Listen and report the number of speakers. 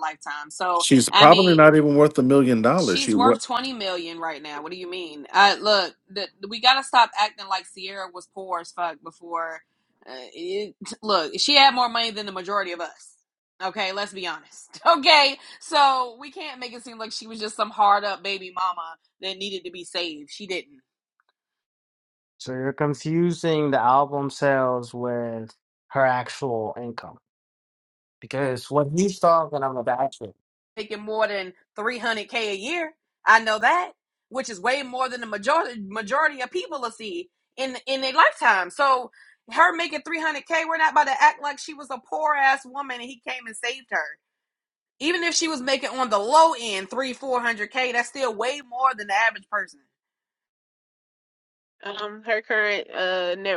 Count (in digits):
4